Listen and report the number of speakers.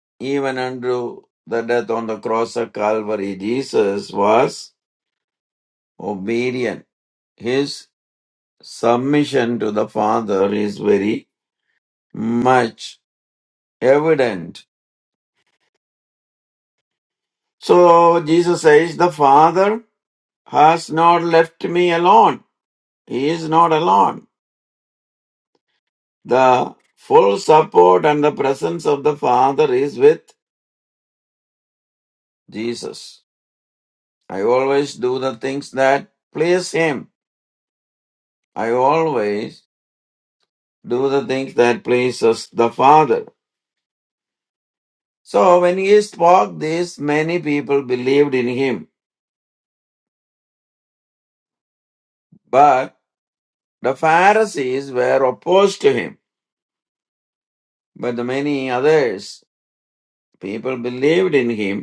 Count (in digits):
1